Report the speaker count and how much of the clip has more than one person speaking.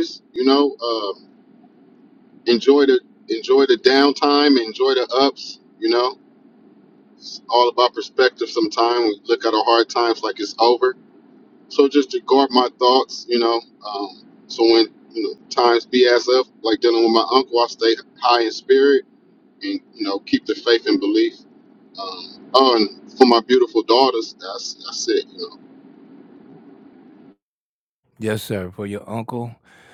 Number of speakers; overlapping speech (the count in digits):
2, no overlap